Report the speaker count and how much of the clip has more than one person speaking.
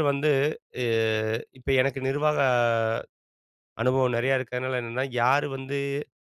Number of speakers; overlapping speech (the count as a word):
one, no overlap